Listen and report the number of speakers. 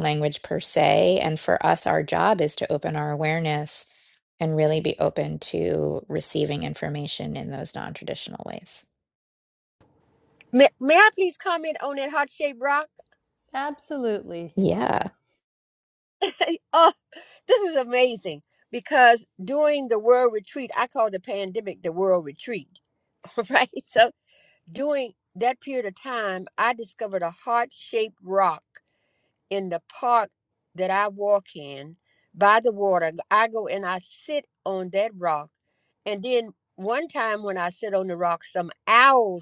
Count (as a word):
three